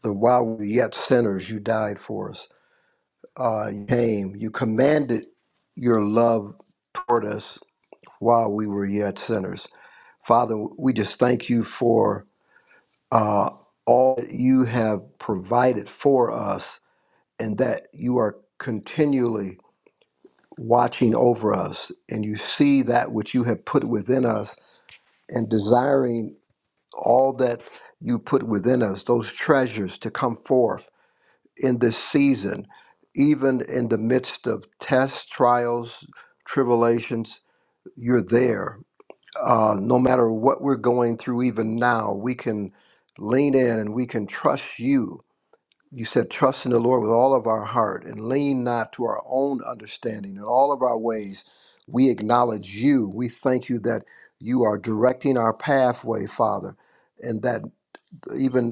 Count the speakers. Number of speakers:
1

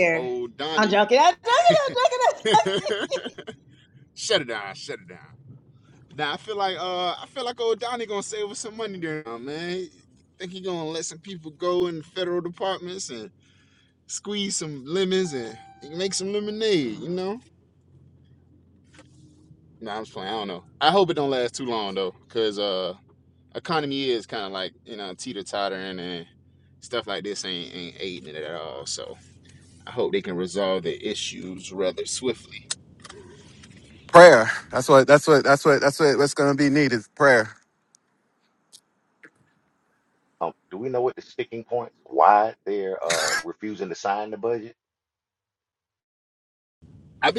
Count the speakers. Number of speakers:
4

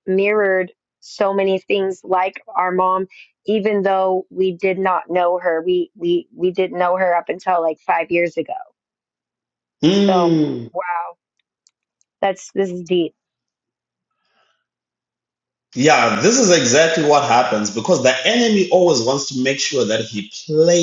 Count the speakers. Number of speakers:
2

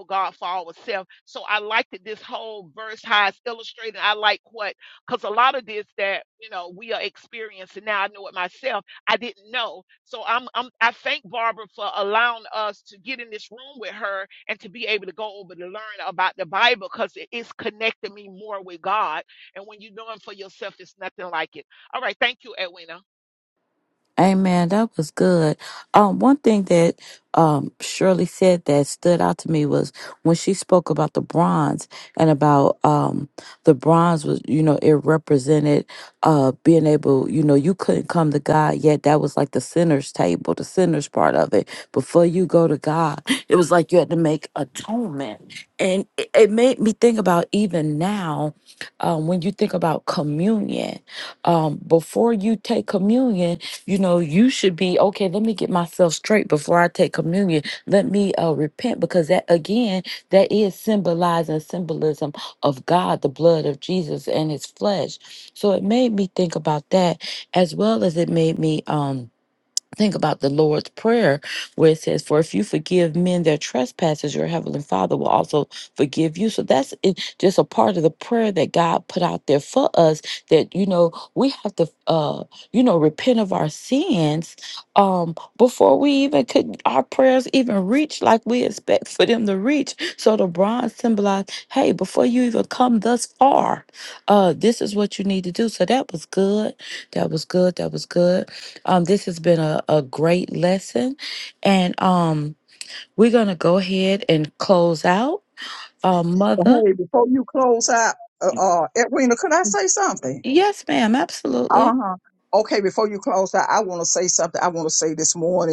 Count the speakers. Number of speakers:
3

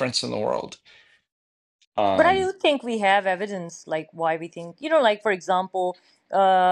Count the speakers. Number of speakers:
2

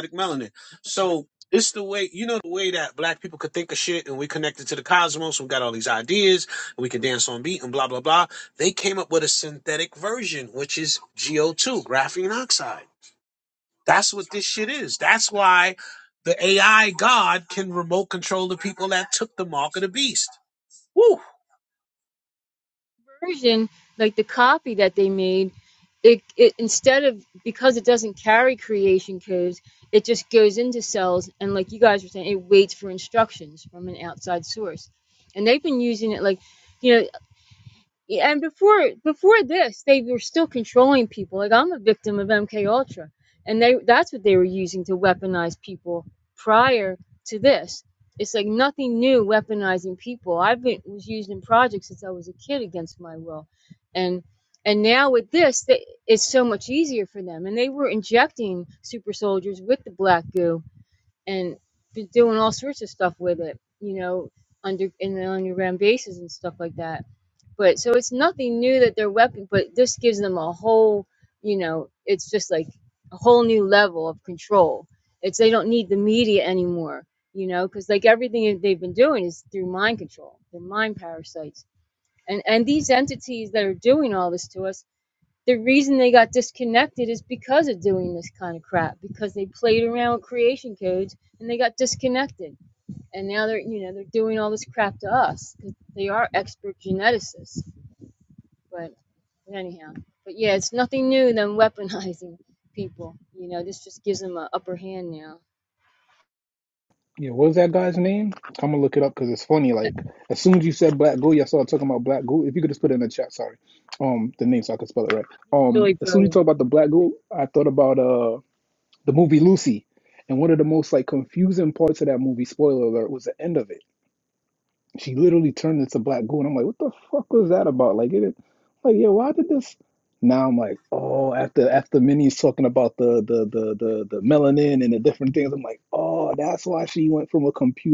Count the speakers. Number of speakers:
3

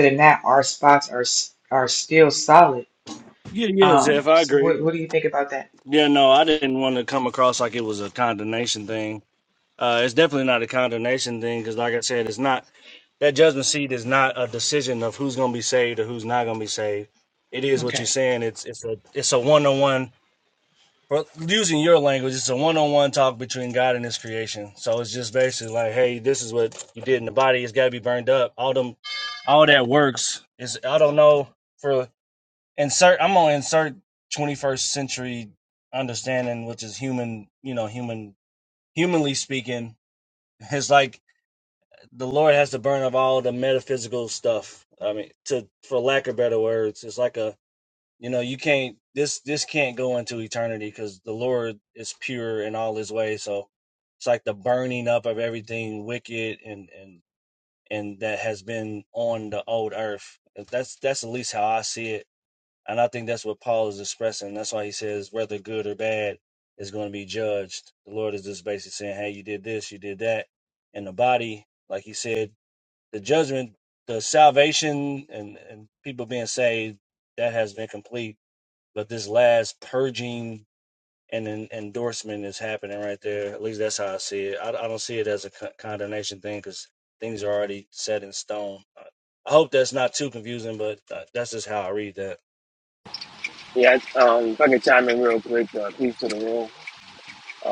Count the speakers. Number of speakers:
3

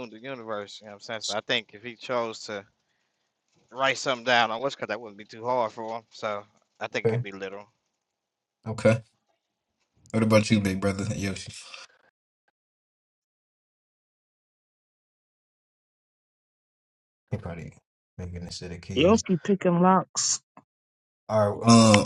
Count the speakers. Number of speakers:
3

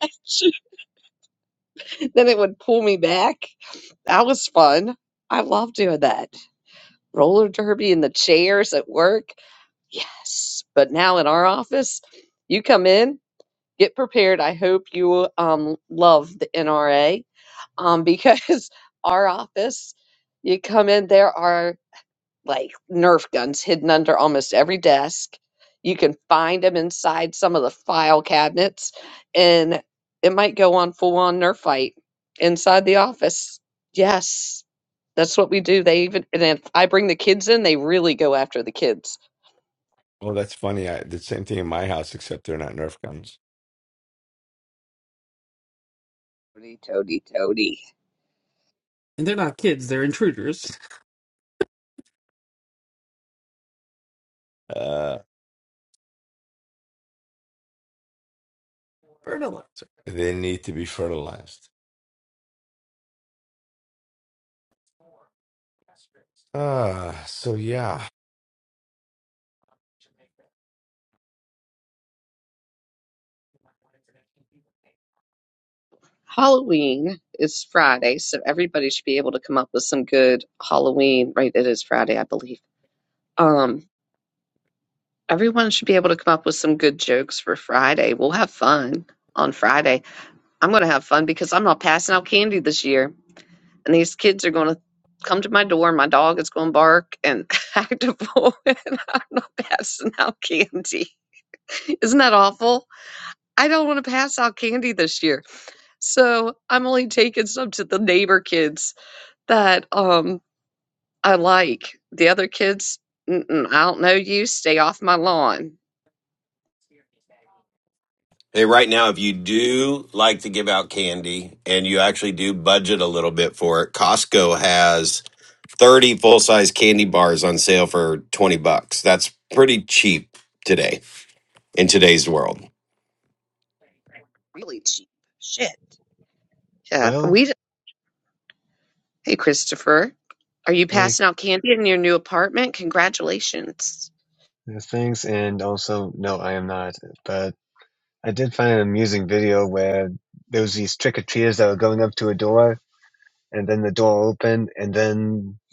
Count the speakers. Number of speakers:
5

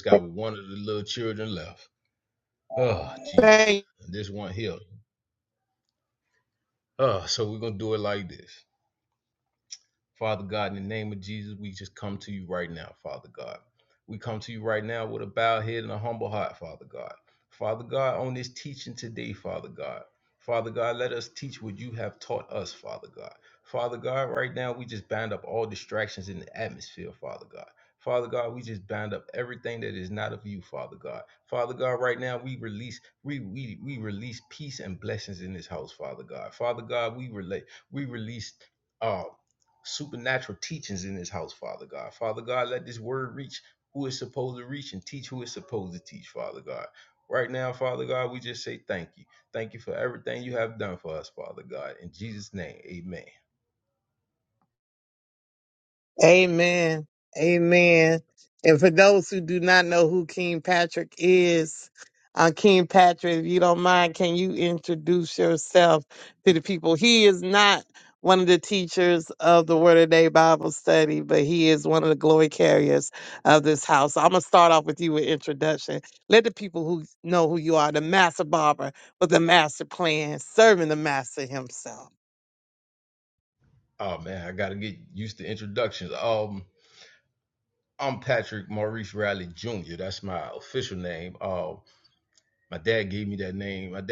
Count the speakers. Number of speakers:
2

